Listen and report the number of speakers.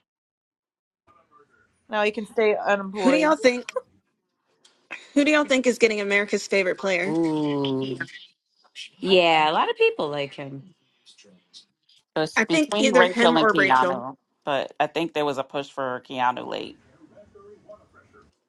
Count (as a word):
four